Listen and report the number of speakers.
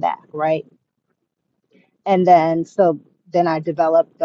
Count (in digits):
1